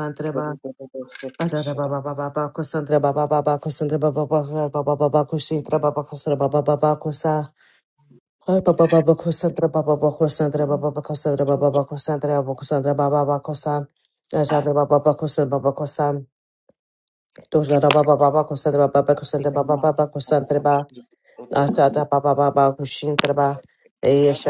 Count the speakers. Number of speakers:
2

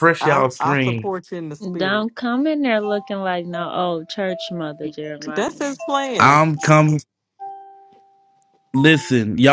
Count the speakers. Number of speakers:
3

